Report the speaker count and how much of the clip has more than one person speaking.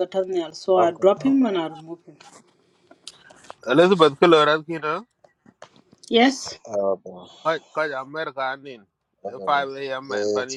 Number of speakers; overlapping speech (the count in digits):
3, about 10%